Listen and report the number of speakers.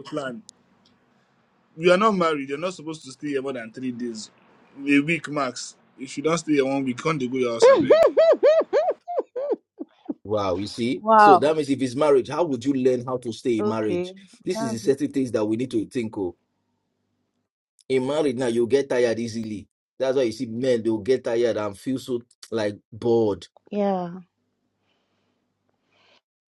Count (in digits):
3